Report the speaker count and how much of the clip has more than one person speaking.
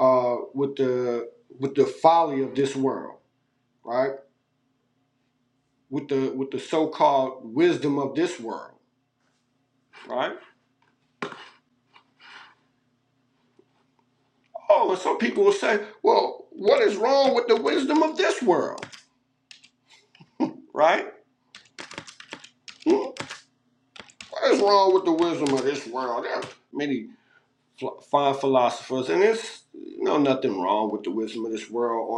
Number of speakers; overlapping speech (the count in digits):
1, no overlap